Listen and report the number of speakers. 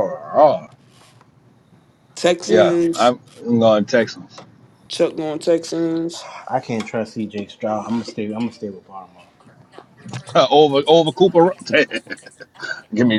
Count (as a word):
three